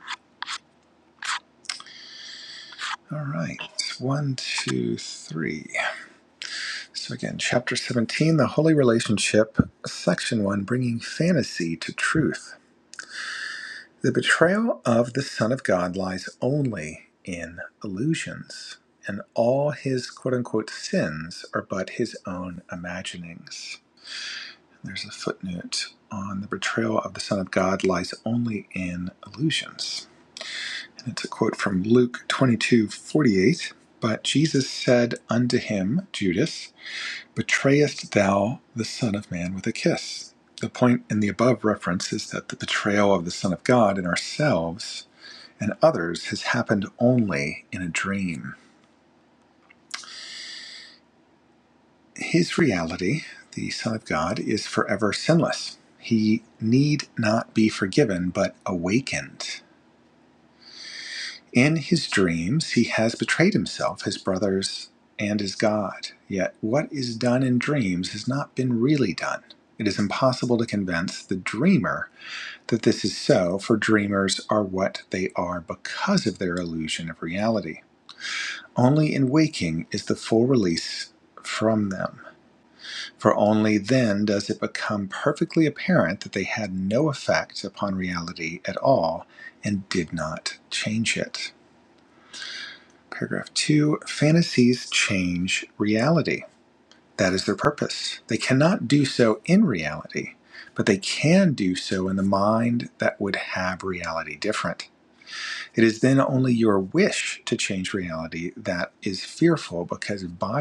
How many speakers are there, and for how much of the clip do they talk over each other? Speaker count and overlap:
one, no overlap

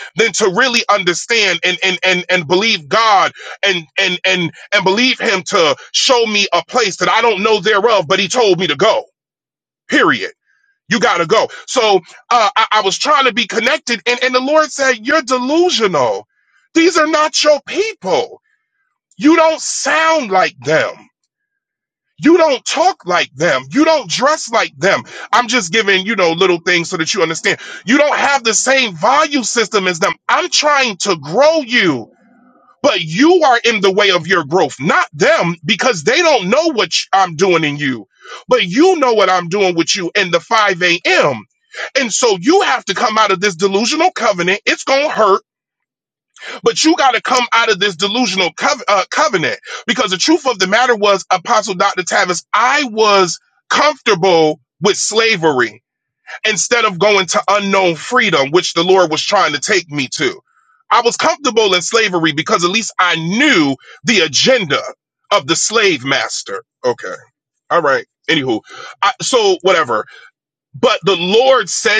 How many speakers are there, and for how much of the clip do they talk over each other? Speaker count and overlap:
one, no overlap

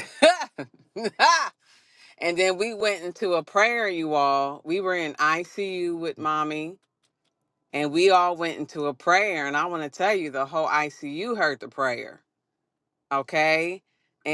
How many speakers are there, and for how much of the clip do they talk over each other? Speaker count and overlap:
one, no overlap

